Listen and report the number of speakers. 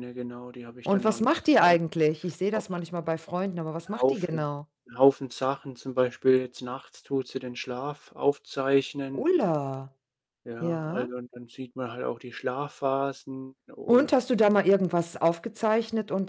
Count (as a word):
two